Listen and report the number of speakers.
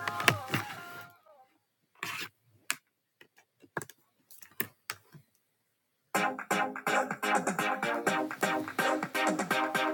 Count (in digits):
0